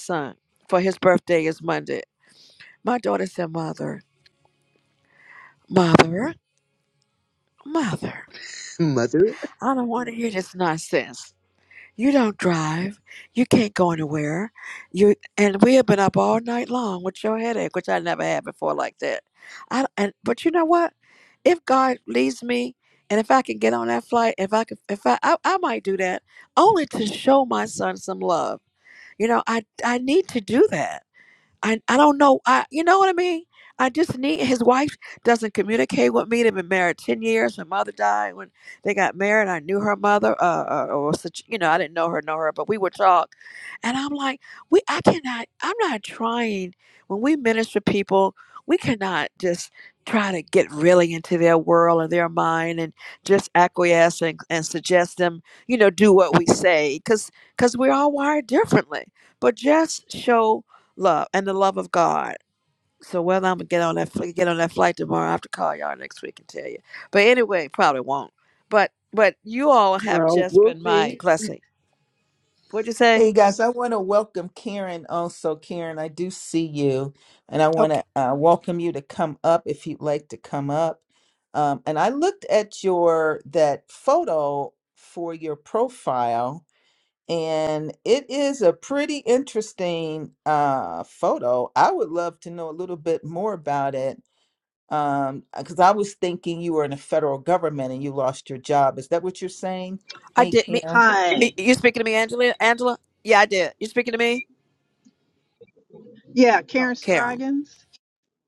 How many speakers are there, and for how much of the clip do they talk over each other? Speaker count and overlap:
4, about 2%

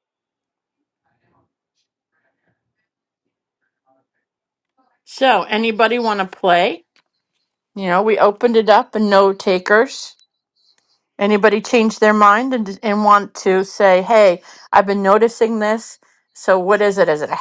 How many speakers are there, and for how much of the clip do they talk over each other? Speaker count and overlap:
1, no overlap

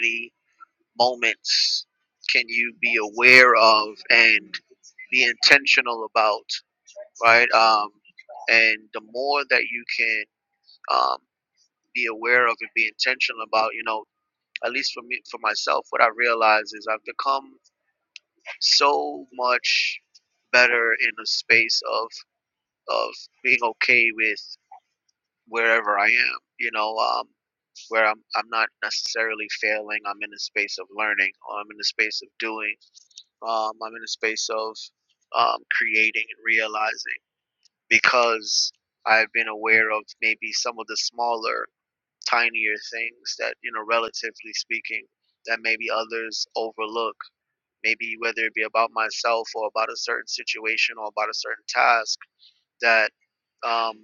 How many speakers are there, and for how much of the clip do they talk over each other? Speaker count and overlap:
1, no overlap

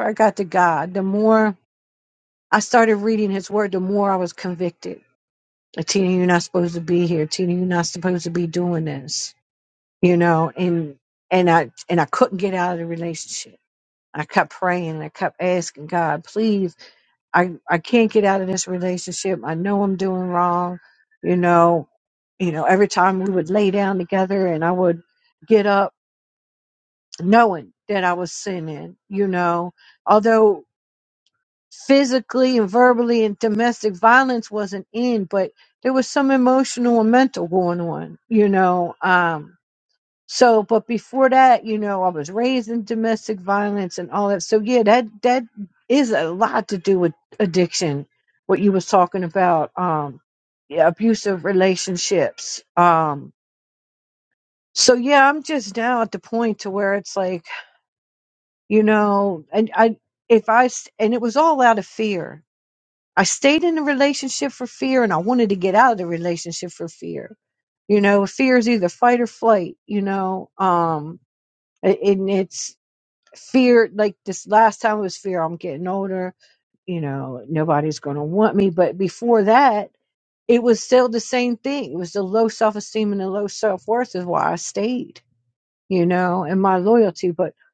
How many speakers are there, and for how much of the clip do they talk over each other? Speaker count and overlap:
1, no overlap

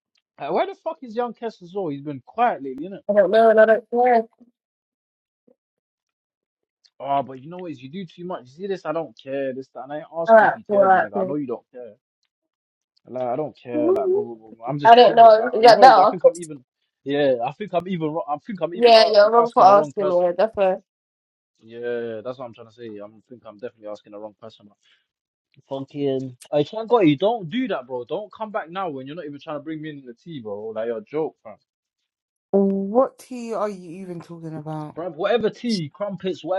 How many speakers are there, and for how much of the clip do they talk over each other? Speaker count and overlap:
3, about 10%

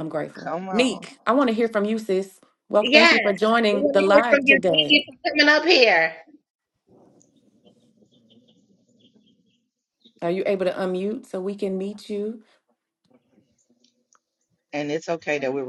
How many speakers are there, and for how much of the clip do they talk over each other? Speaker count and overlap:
3, about 15%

